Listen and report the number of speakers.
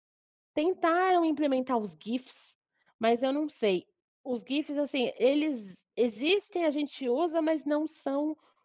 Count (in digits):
1